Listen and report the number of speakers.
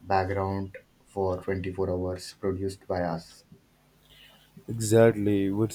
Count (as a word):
two